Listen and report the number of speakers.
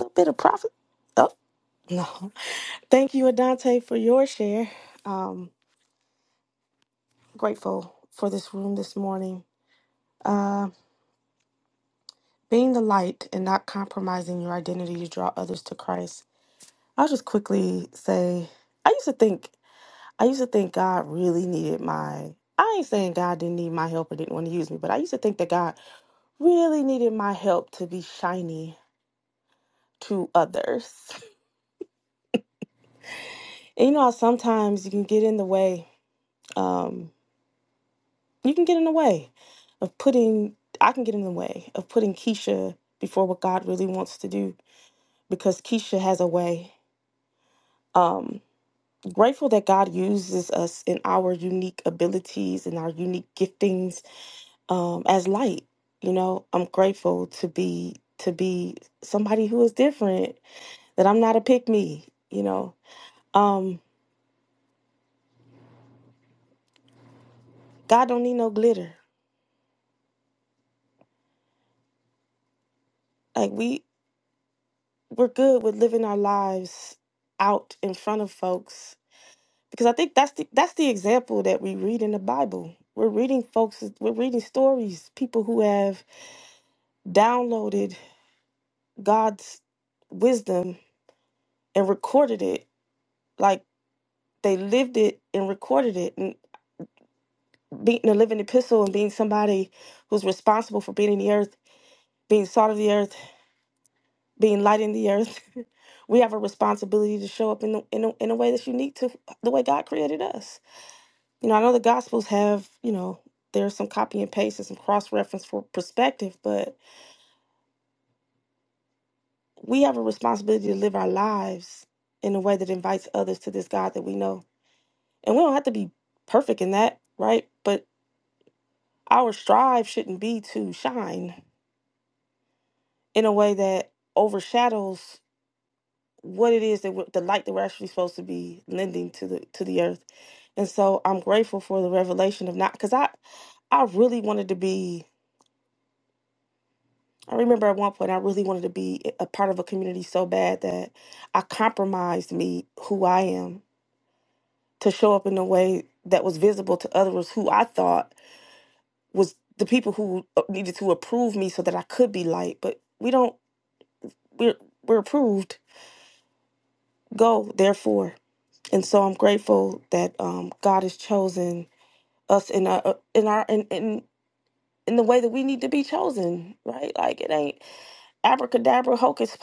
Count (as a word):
one